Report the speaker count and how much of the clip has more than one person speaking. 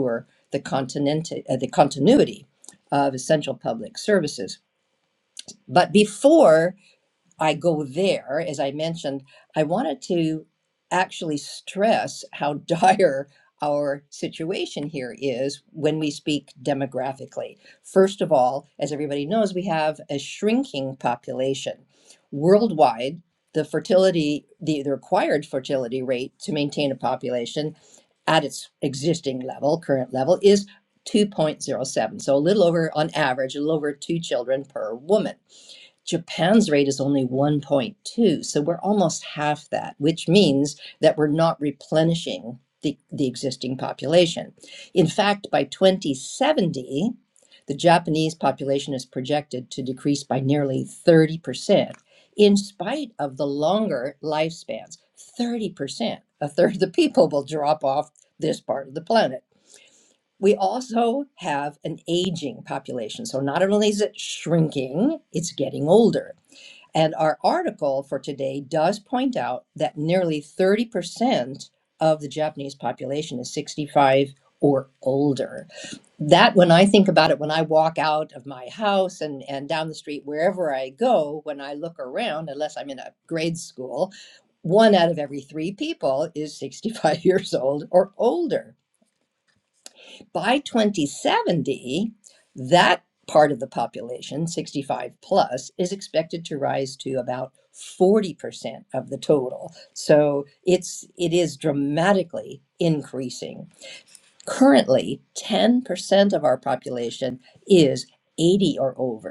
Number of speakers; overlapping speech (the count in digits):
1, no overlap